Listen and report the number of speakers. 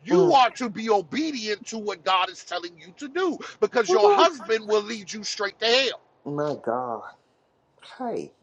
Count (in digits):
2